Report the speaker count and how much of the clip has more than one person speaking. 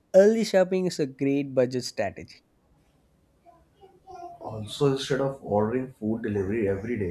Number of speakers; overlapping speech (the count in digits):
2, no overlap